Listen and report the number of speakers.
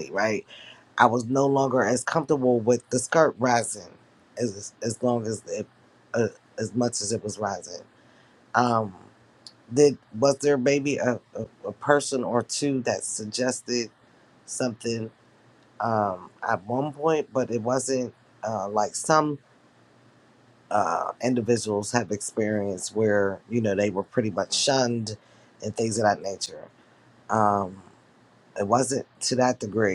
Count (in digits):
1